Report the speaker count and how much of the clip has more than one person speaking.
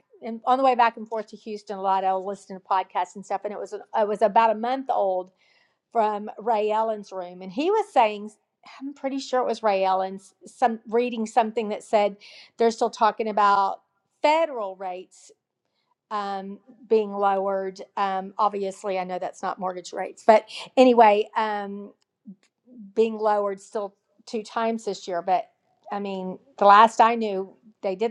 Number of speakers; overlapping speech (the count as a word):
one, no overlap